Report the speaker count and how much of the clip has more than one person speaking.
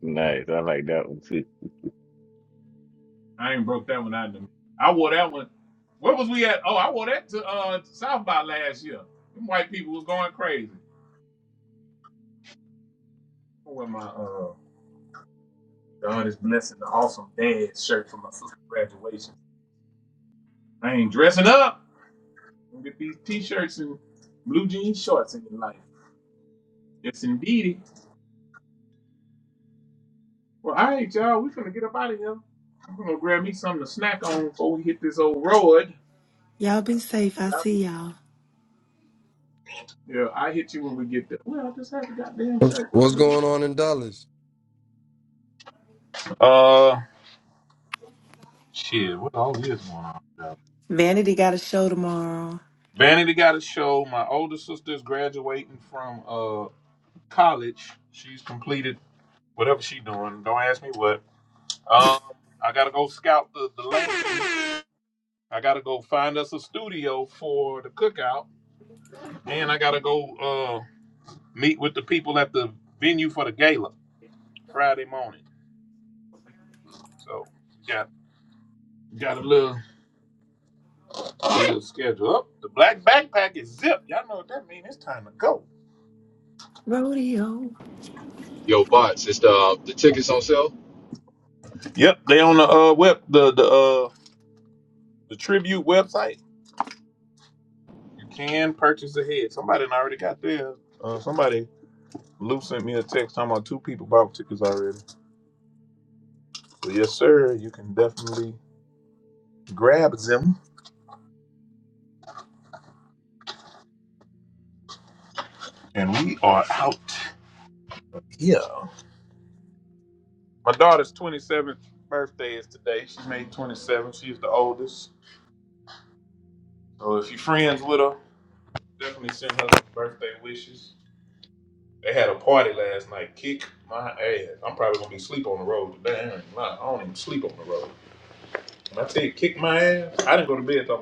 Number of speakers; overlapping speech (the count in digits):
5, under 1%